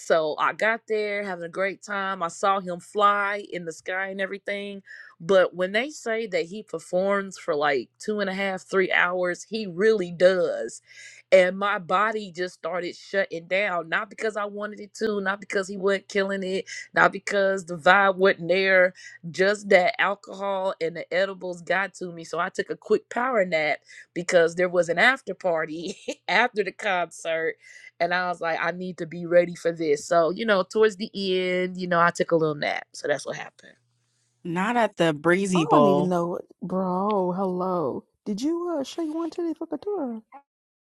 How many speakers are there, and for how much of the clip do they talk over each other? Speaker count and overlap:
three, about 1%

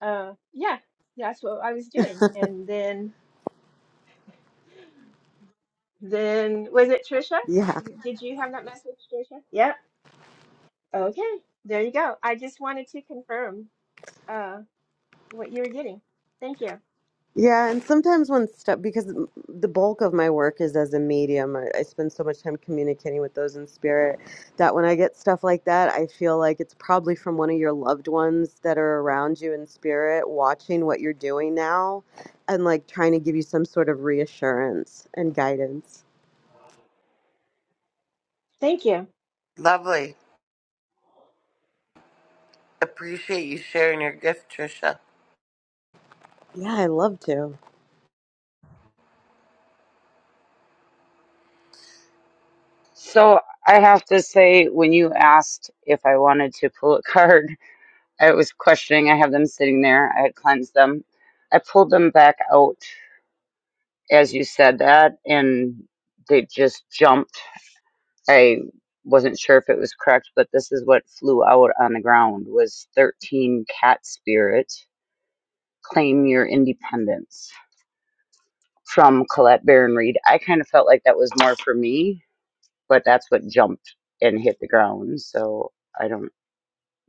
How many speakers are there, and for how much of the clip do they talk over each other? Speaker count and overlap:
four, no overlap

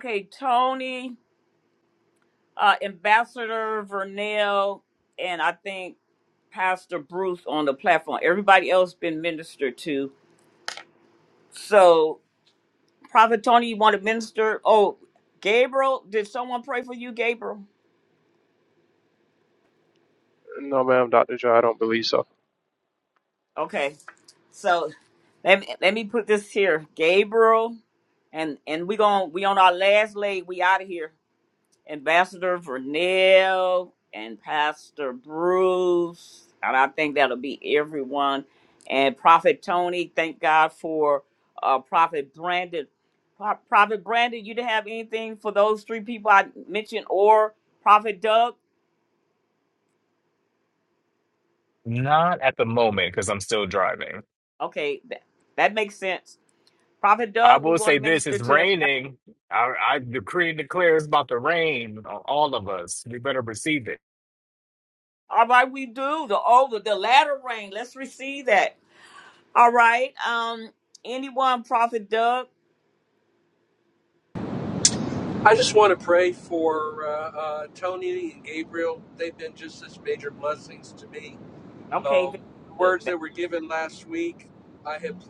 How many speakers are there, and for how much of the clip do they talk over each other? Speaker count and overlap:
four, about 2%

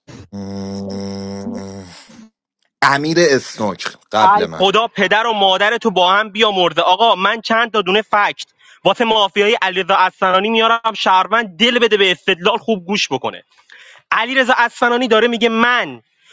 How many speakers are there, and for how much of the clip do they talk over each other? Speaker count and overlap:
two, under 1%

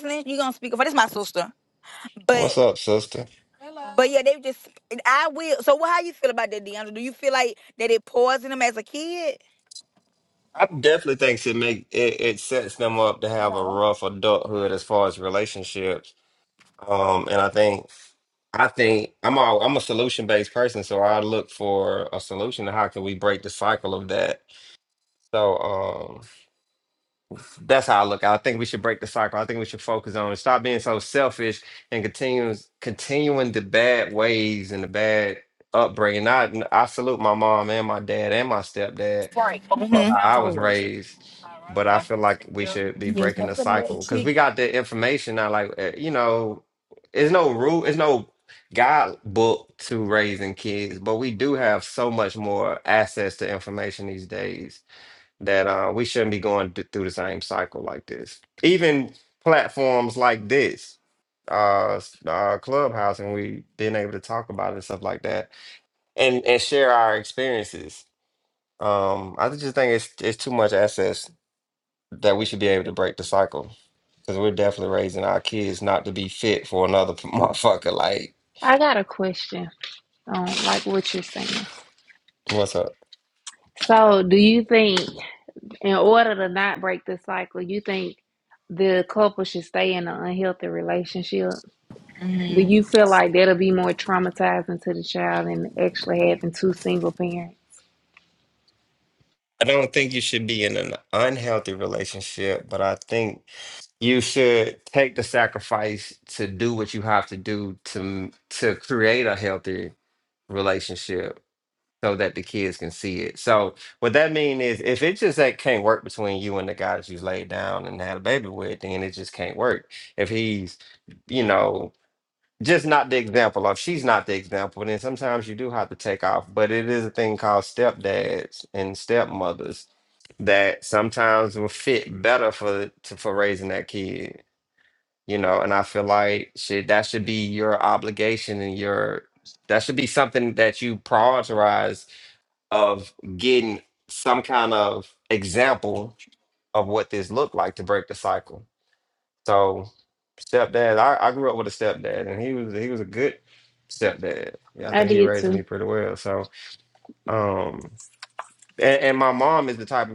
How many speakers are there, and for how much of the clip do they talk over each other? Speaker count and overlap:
three, about 1%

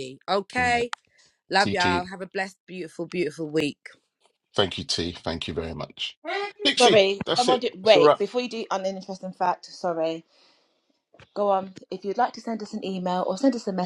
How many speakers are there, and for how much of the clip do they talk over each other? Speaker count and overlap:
three, about 15%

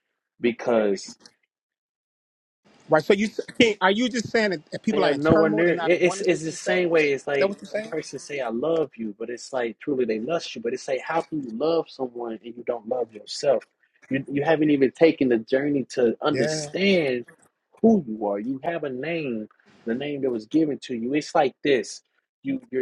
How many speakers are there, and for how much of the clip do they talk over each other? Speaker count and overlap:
two, about 13%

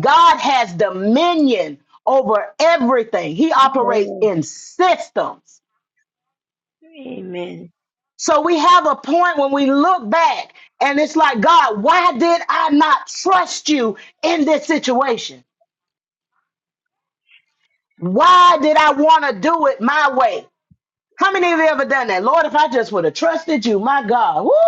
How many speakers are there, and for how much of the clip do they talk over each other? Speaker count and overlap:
two, about 2%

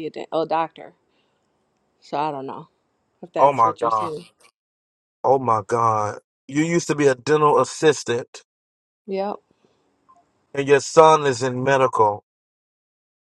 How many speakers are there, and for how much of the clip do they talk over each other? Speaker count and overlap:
two, about 5%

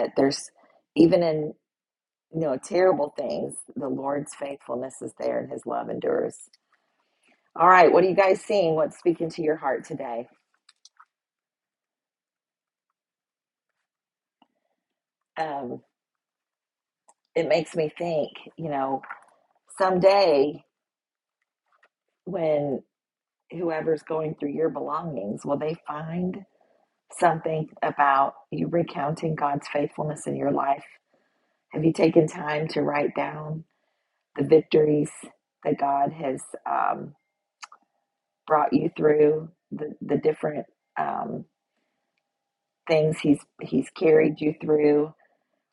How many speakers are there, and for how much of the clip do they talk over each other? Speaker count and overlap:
one, no overlap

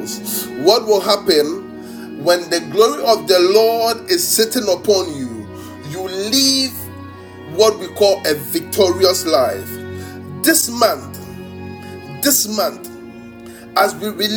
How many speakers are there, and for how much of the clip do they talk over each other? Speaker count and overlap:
one, no overlap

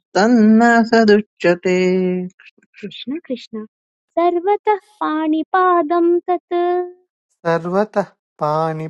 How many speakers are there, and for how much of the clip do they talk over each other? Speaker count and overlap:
three, no overlap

